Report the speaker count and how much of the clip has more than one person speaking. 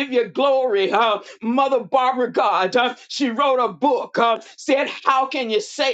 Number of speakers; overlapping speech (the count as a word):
one, no overlap